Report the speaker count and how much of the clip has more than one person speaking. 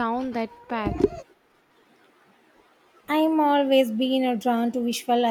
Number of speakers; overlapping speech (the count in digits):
2, no overlap